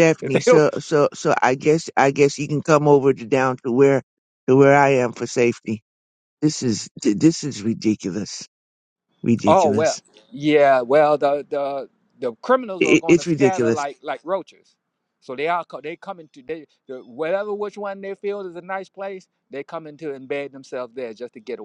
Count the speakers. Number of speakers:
2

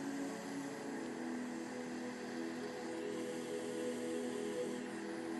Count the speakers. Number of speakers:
0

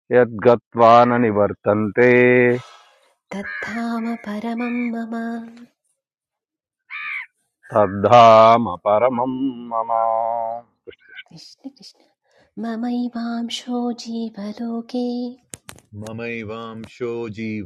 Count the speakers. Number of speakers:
3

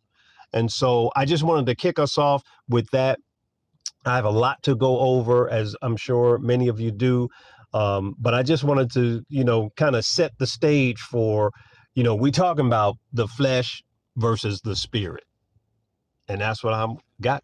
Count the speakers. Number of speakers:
1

